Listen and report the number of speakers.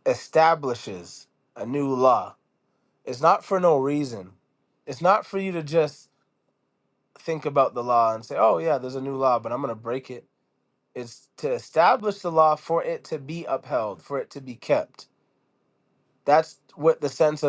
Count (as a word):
one